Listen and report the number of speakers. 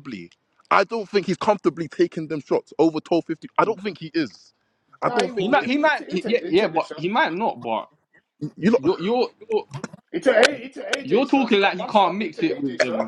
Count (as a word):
three